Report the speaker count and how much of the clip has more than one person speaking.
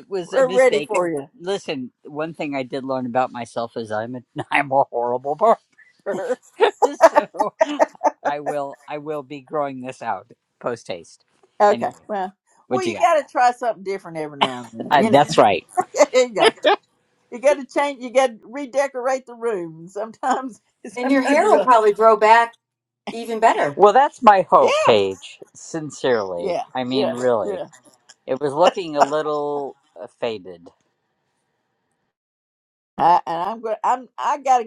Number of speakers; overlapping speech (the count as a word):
three, about 11%